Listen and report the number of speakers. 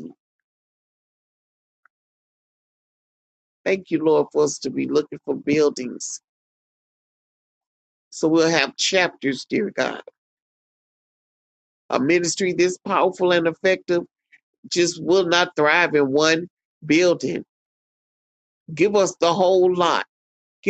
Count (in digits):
1